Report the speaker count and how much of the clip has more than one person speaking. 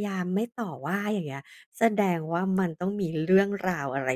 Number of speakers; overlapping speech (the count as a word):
one, no overlap